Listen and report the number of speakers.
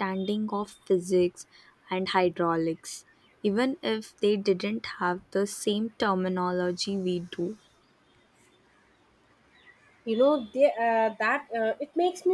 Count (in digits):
2